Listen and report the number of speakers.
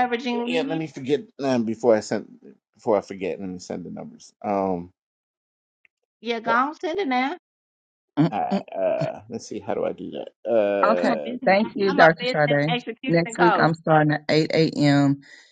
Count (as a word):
three